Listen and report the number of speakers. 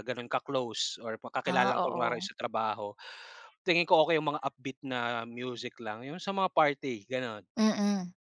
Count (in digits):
2